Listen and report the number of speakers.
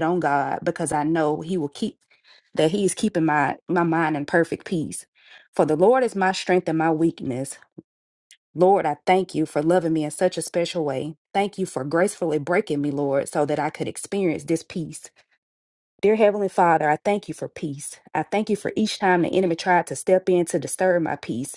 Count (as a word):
one